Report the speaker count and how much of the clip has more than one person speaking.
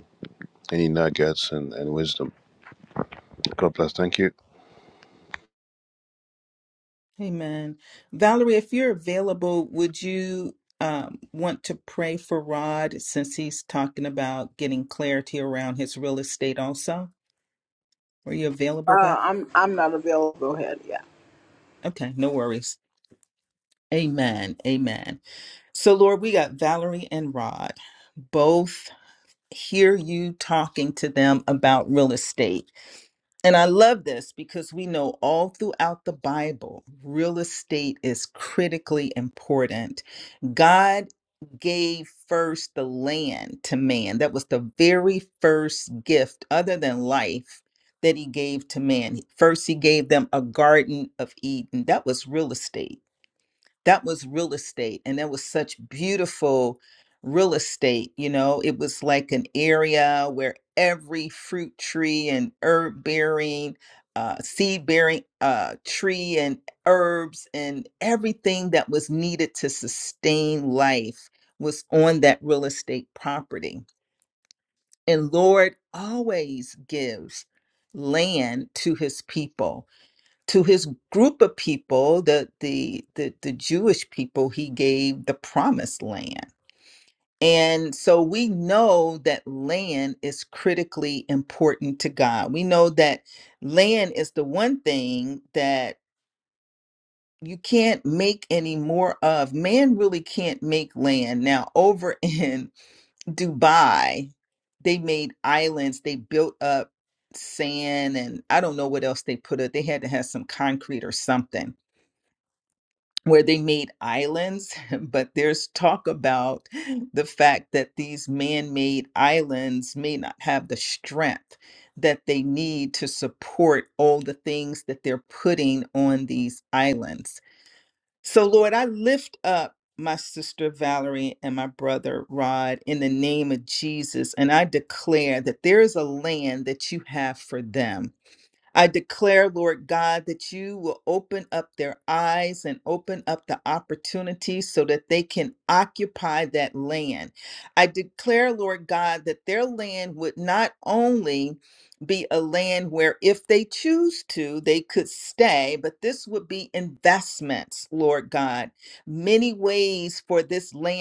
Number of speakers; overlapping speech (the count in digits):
3, under 1%